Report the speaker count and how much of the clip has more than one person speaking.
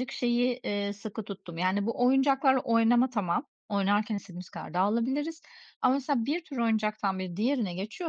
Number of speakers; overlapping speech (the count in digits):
1, no overlap